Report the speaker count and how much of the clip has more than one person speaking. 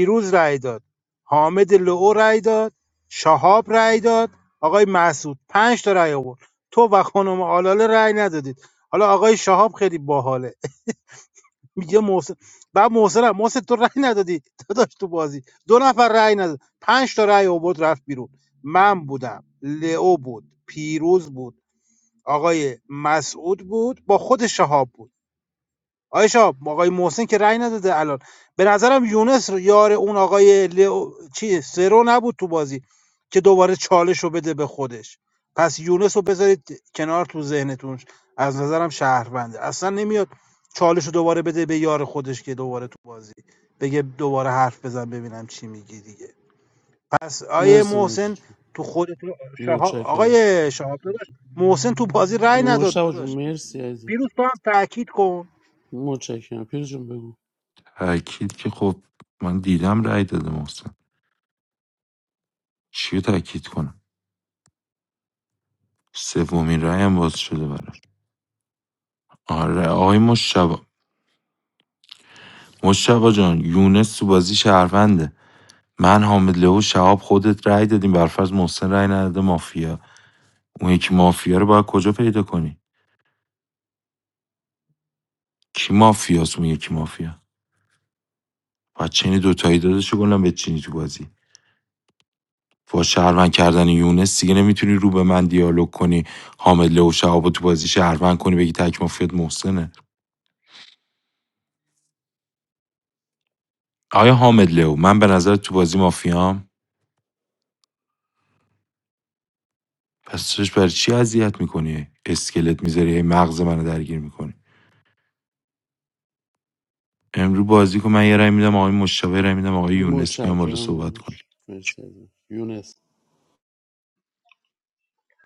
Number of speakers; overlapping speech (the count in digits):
3, about 3%